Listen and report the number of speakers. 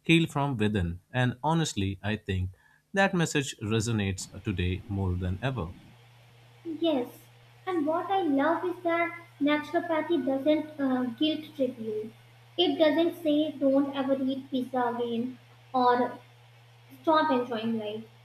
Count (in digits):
2